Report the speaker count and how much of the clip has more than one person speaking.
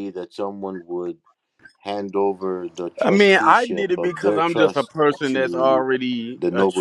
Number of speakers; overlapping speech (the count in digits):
2, about 41%